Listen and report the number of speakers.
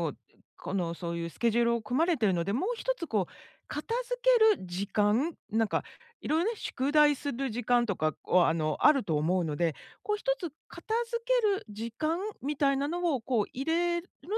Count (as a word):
one